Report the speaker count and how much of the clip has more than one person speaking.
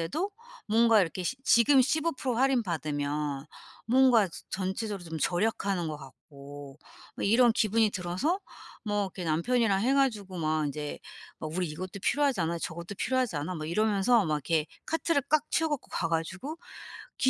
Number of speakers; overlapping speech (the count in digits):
1, no overlap